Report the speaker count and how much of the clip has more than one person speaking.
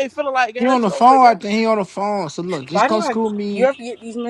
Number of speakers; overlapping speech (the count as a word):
three, about 33%